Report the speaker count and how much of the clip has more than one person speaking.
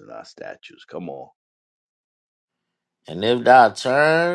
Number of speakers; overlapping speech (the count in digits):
2, no overlap